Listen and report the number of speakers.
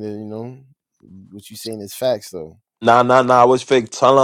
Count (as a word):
two